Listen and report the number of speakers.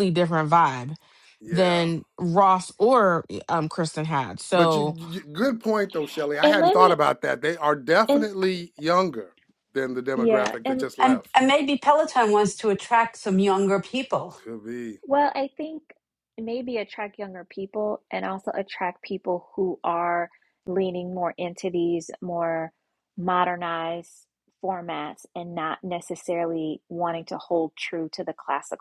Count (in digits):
4